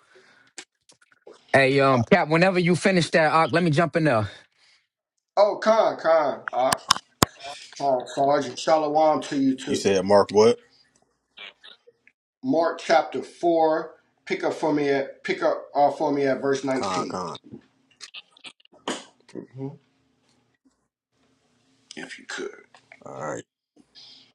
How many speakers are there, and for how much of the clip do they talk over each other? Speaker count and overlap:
3, about 2%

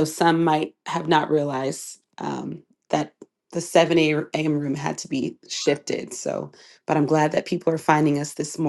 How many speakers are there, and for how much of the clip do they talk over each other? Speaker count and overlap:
1, no overlap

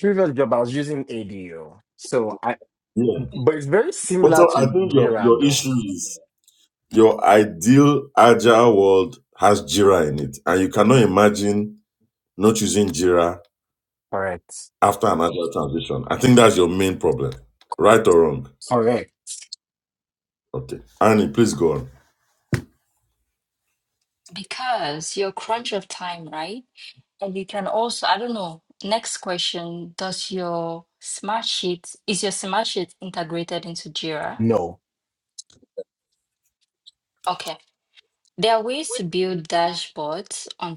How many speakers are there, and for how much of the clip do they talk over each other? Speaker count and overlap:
3, about 4%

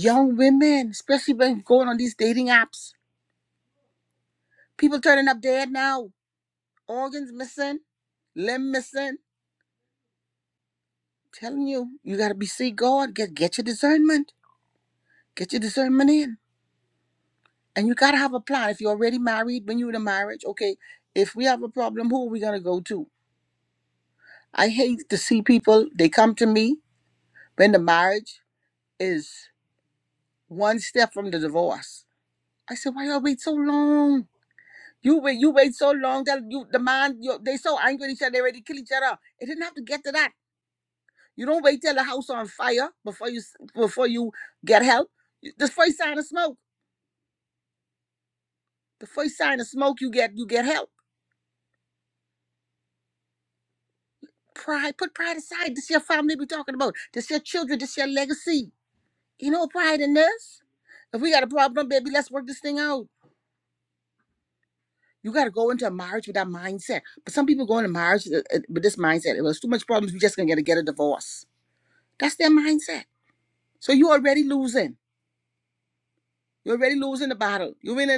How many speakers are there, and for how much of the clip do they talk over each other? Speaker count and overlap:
1, no overlap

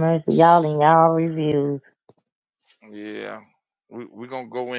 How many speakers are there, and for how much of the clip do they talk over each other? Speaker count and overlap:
2, no overlap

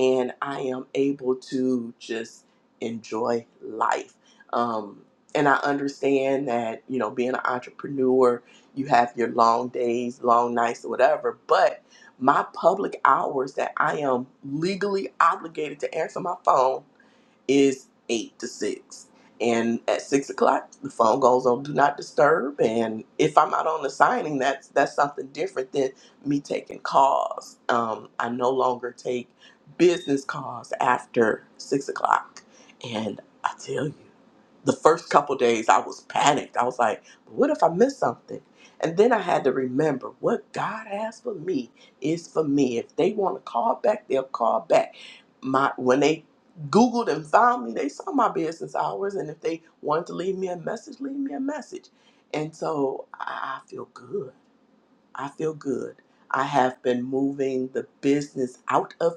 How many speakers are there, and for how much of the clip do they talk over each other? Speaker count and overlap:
1, no overlap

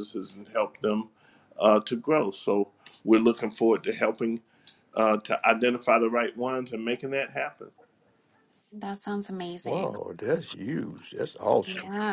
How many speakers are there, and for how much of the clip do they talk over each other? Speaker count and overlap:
3, about 4%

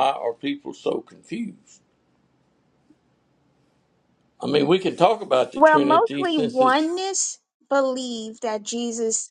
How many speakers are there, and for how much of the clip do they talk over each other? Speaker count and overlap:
2, about 14%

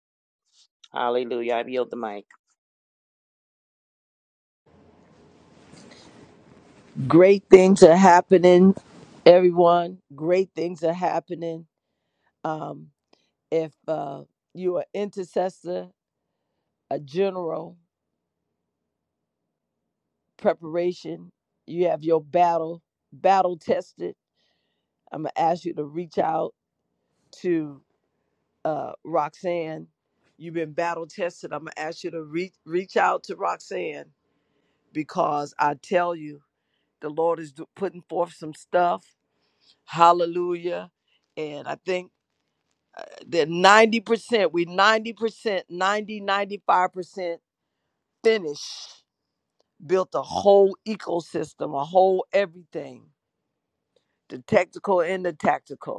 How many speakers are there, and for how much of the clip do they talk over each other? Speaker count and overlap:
2, no overlap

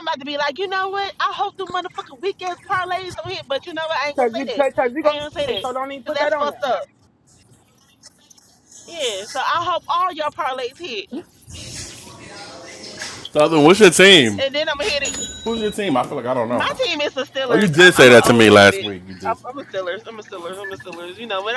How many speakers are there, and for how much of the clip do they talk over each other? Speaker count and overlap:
3, about 16%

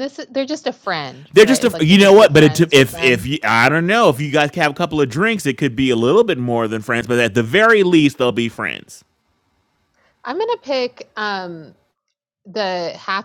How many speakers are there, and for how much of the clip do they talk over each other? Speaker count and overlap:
2, about 14%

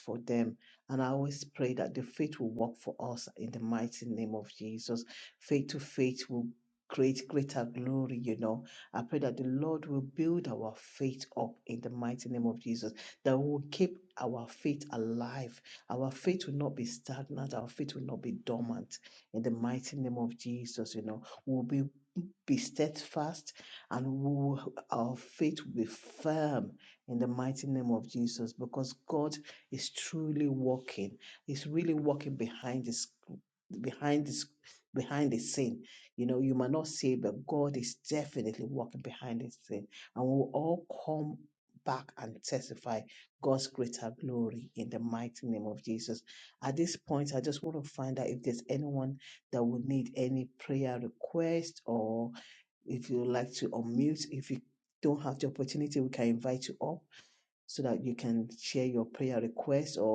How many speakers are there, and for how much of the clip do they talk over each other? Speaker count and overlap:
1, no overlap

